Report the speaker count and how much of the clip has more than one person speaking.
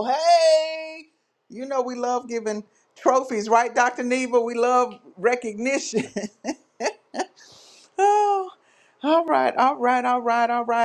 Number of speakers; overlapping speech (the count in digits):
1, no overlap